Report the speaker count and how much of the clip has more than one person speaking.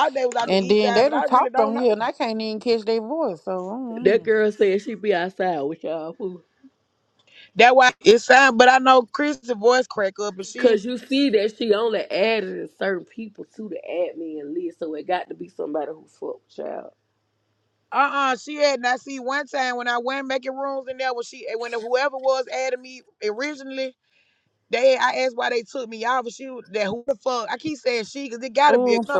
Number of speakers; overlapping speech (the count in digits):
3, about 8%